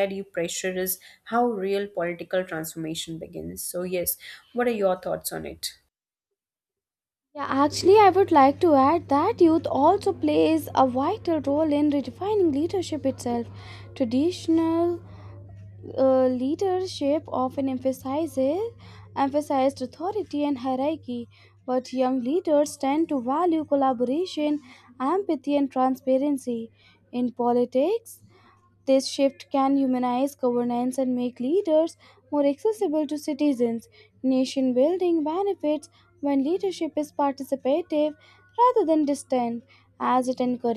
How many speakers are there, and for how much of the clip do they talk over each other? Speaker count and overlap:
2, no overlap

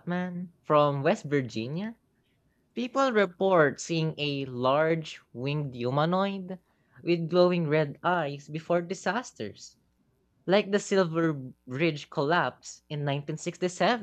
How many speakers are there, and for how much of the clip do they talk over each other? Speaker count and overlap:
1, no overlap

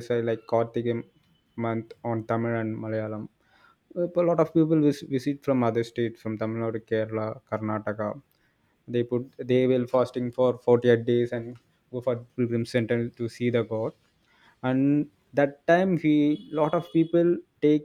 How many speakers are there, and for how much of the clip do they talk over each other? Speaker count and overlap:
1, no overlap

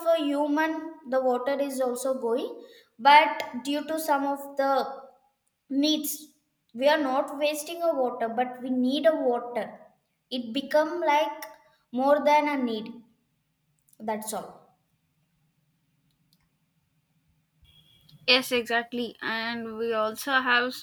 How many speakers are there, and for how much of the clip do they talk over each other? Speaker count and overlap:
2, no overlap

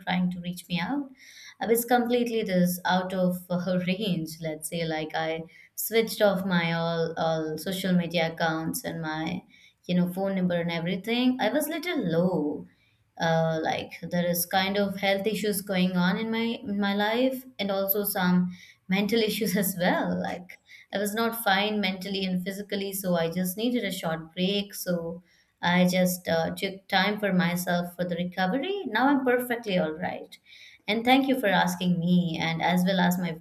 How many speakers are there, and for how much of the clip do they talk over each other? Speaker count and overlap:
1, no overlap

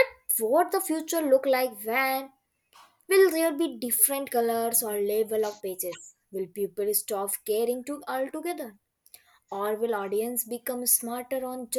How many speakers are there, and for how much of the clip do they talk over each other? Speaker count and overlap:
1, no overlap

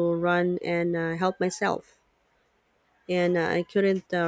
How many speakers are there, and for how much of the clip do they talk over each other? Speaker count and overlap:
1, no overlap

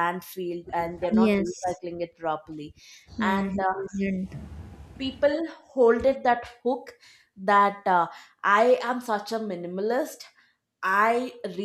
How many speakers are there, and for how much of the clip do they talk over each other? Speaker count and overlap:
2, about 7%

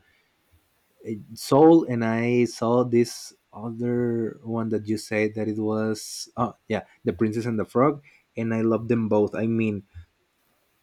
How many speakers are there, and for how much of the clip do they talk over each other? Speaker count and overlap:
1, no overlap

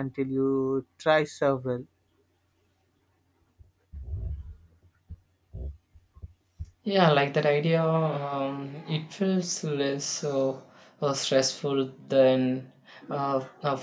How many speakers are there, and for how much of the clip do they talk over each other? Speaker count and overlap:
2, no overlap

